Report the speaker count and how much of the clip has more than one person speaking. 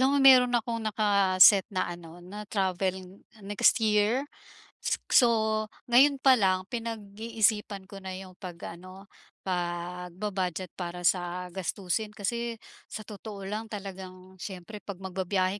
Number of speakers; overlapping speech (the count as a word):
one, no overlap